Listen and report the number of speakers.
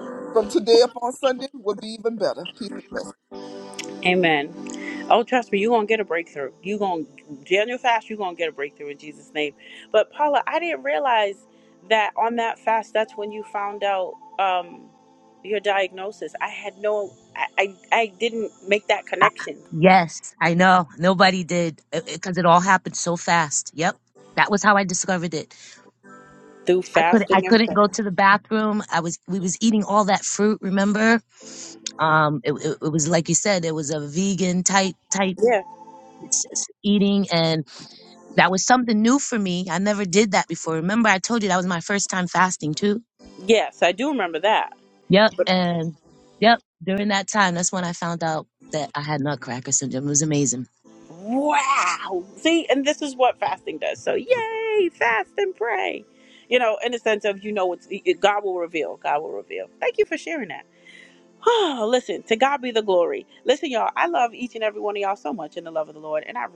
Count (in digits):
3